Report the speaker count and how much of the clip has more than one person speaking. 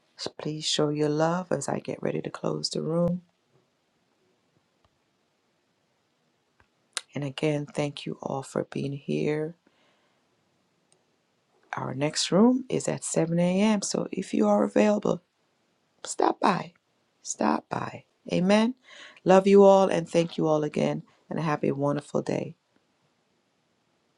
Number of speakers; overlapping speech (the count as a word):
one, no overlap